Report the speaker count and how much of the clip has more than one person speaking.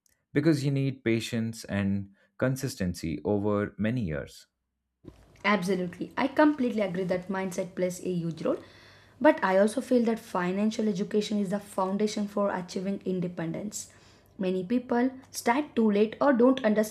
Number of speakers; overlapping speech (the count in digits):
2, no overlap